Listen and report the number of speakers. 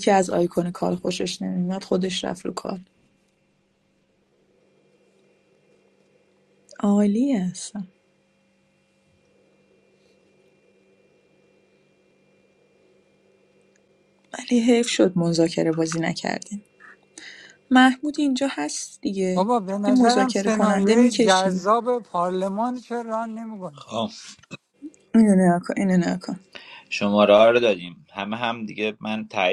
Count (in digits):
3